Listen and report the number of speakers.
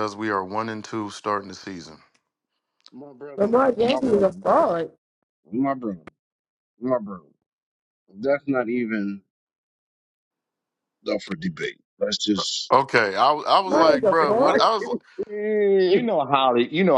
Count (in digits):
4